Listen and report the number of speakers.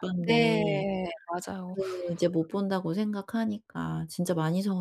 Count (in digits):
2